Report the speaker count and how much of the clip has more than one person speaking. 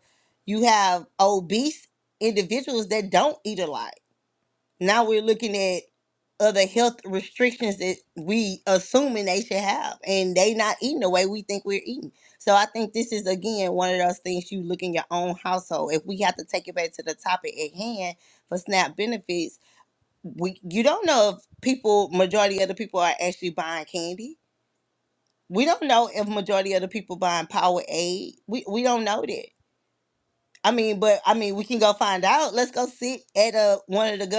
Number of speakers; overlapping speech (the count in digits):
1, no overlap